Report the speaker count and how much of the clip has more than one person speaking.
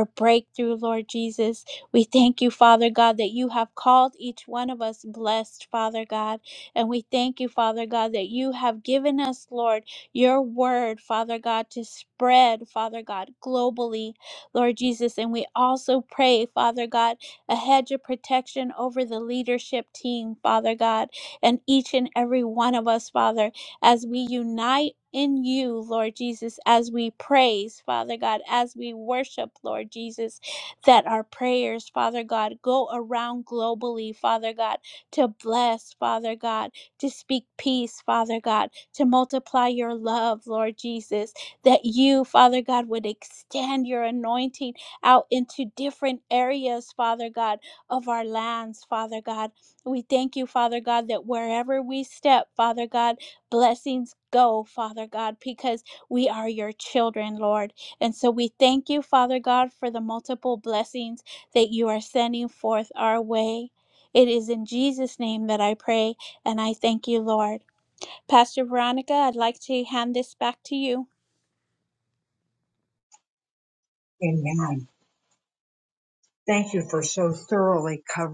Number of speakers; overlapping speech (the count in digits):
2, no overlap